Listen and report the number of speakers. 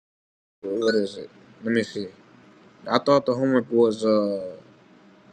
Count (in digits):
1